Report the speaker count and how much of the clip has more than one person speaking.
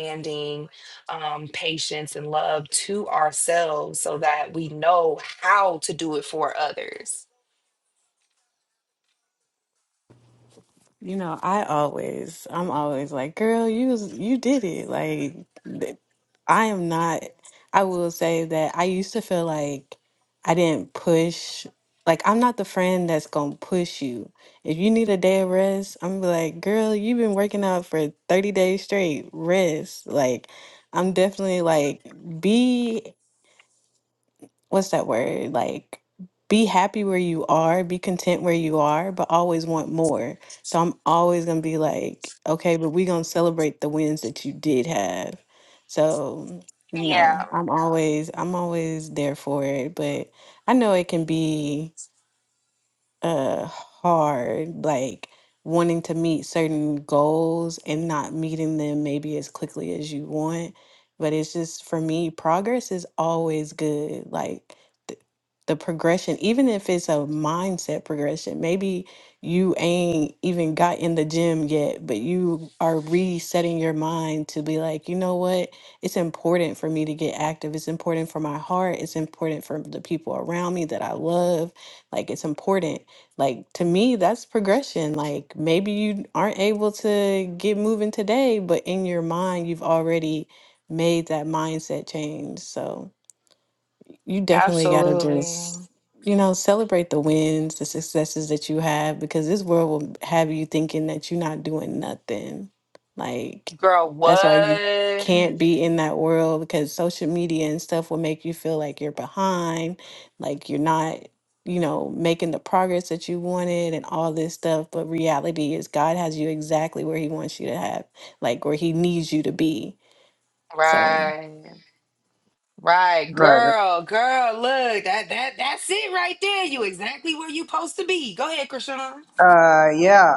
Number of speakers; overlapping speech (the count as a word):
three, about 2%